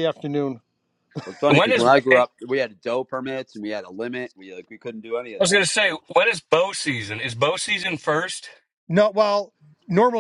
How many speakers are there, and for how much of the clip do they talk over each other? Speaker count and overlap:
3, about 10%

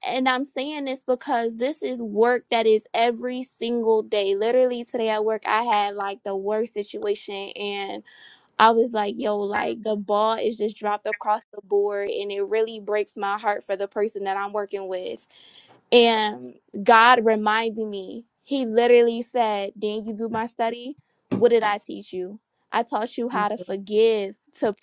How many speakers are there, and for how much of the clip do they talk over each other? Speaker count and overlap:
1, no overlap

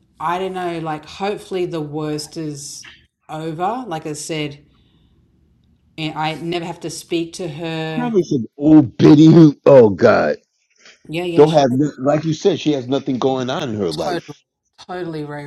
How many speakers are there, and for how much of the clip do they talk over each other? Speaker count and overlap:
2, about 4%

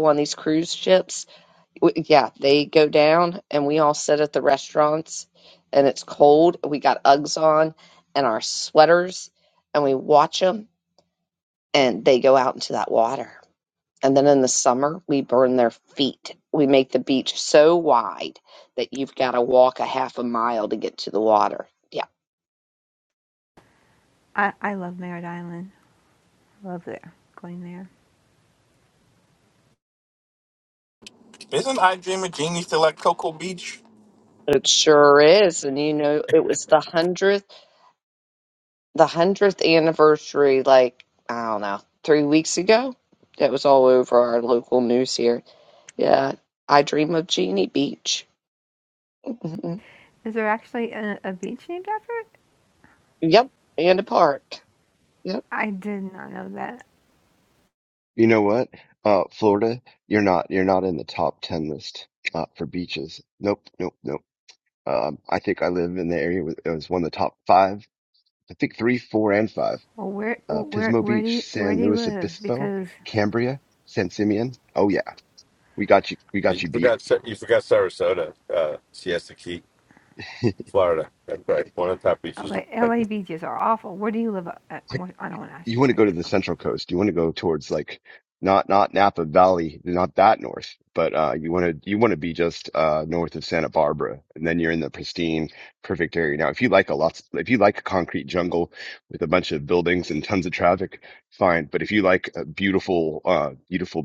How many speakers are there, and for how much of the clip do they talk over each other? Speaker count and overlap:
5, about 3%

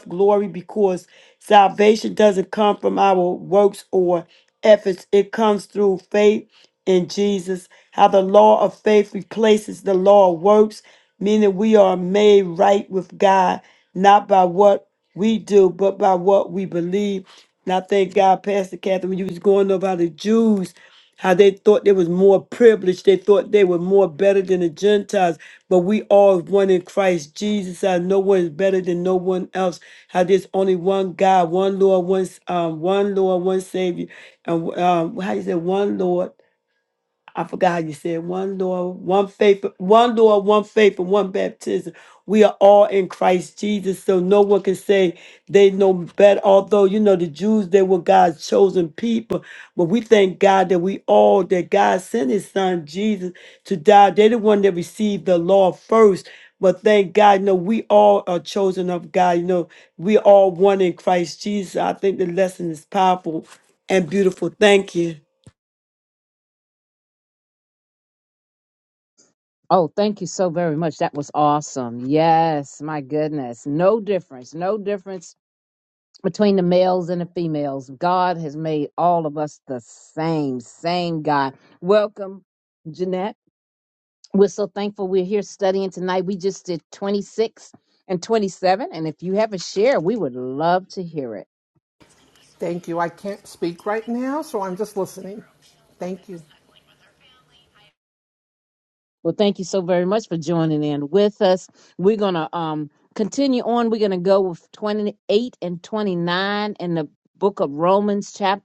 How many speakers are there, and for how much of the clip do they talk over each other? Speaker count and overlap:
3, no overlap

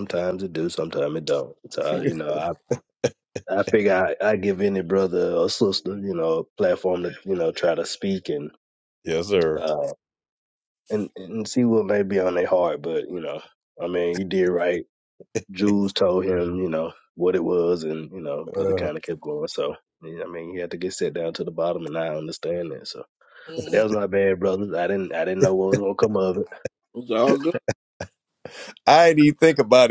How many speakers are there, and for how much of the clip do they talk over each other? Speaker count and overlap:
3, about 3%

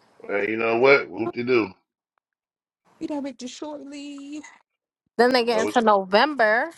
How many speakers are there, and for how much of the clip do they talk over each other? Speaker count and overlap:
3, about 4%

